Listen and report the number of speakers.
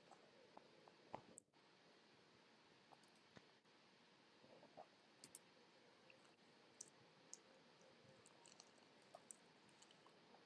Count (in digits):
0